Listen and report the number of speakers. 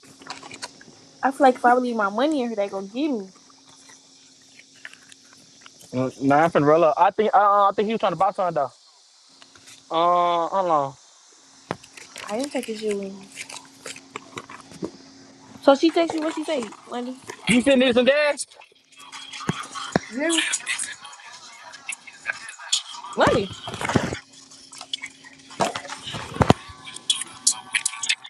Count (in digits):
2